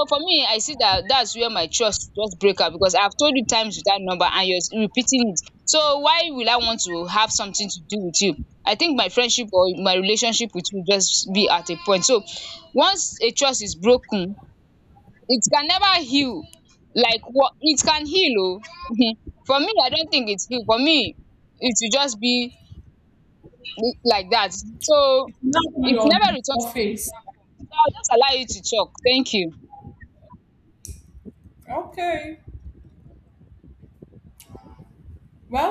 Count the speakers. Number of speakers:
2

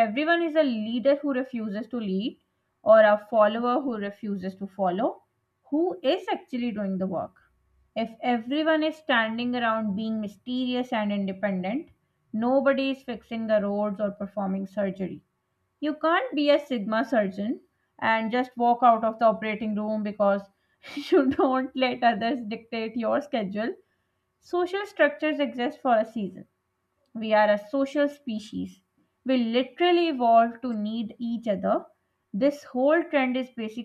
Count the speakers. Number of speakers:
1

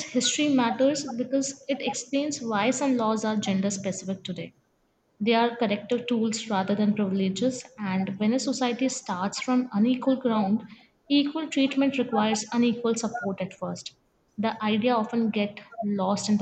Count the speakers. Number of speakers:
1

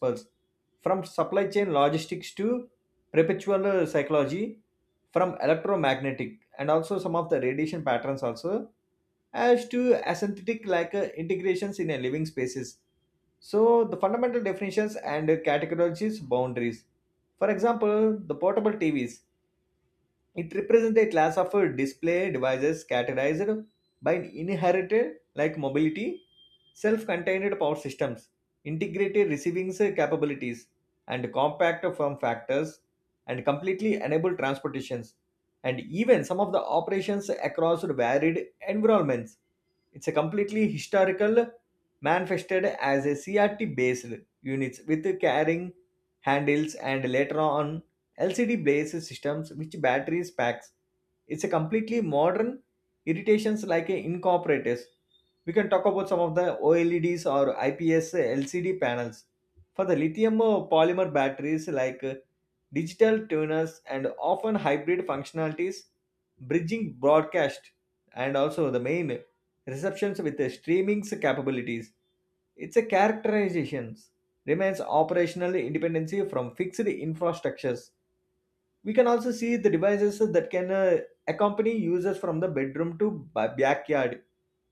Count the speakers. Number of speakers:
1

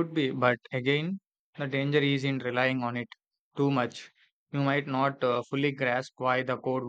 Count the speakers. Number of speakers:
1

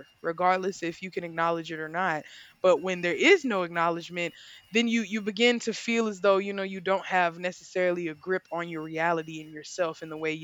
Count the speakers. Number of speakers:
1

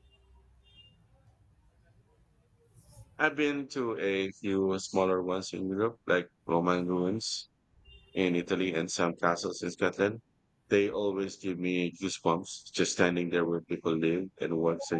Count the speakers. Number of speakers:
1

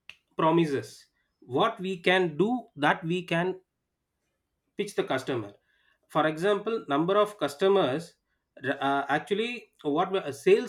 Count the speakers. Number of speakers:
1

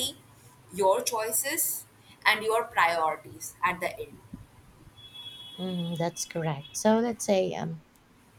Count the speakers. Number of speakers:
2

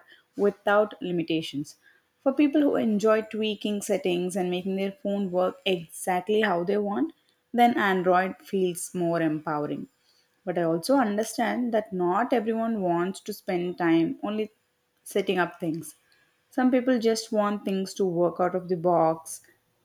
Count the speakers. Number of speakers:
1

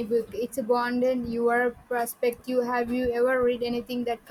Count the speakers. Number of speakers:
1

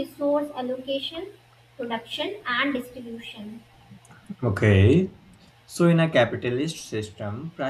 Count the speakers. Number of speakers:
2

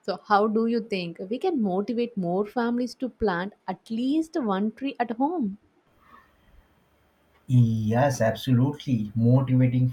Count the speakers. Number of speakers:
2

